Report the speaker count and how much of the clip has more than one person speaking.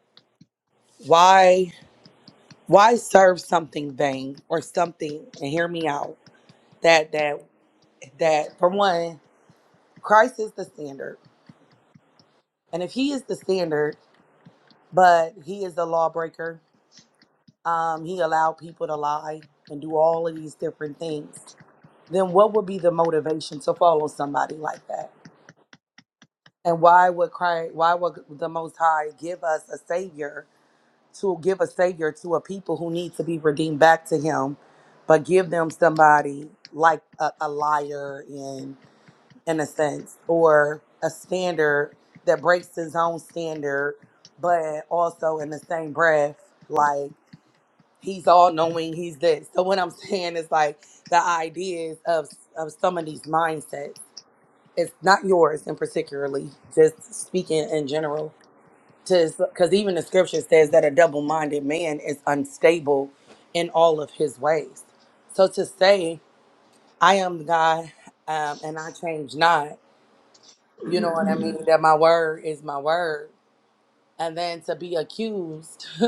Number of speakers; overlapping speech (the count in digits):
1, no overlap